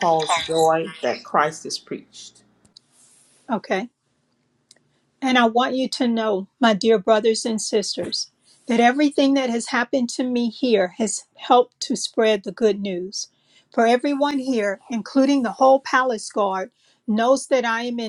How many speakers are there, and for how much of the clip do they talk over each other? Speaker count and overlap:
2, no overlap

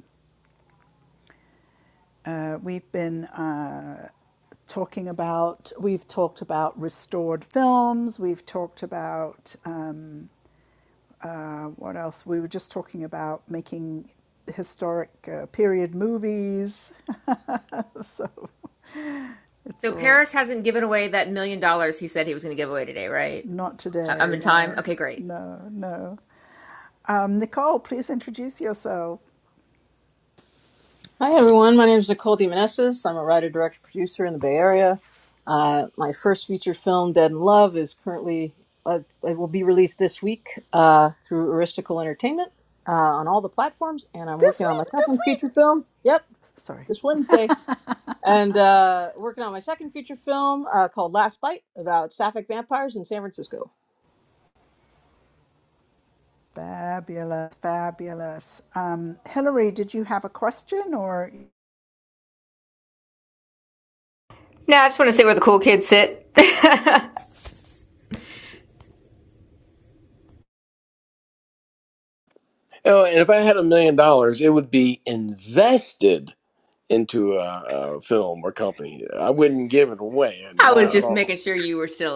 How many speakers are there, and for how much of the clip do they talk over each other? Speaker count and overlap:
4, about 3%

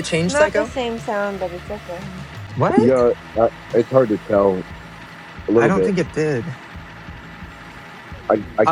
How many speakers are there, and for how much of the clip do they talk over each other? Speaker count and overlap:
3, about 13%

